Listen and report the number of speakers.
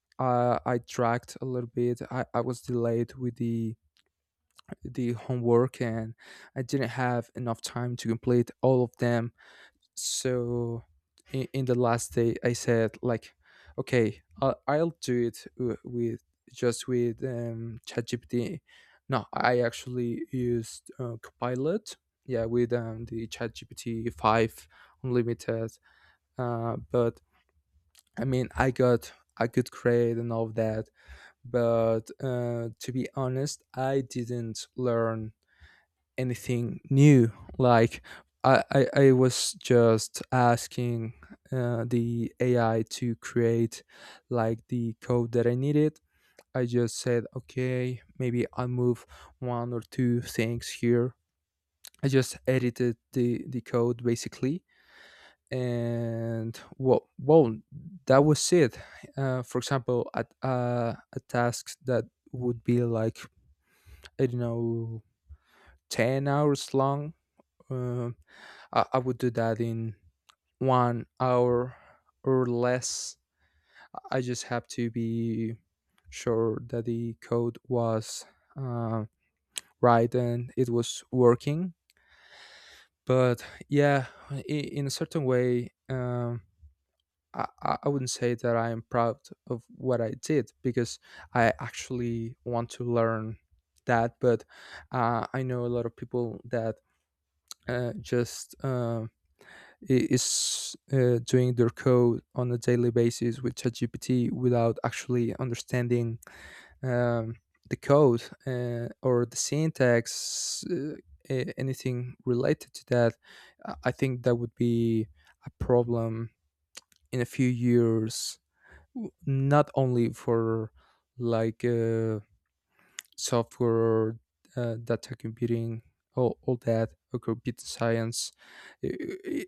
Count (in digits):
1